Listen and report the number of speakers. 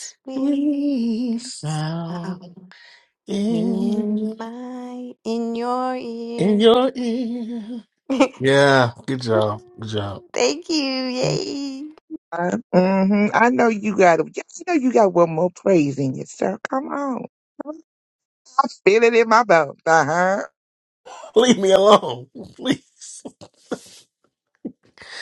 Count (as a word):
three